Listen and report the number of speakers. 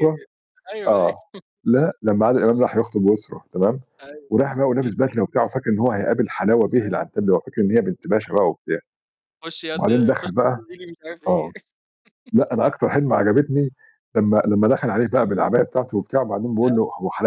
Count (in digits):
2